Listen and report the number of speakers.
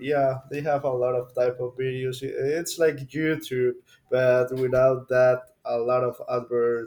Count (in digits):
1